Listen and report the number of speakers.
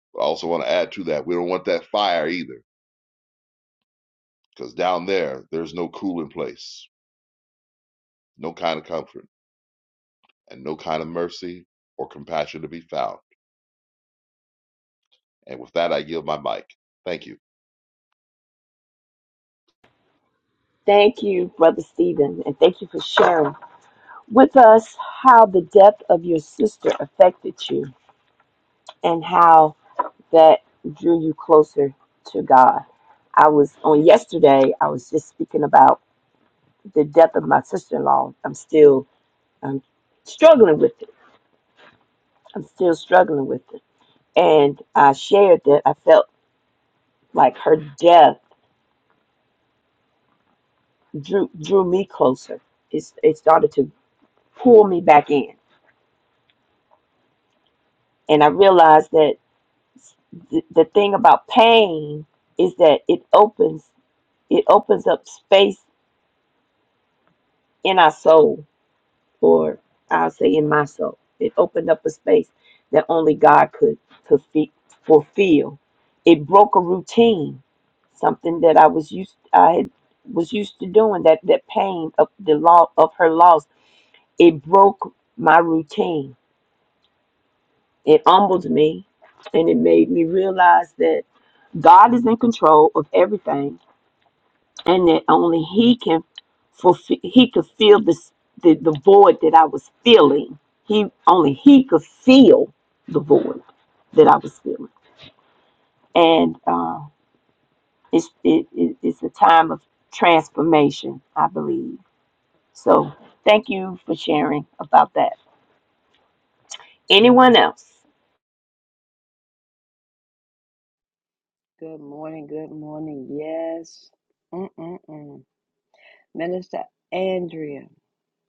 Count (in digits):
3